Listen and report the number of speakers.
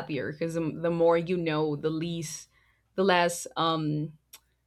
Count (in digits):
1